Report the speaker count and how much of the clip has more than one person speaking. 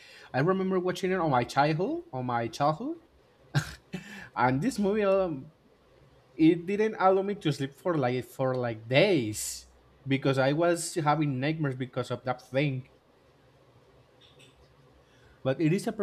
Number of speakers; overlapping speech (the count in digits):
1, no overlap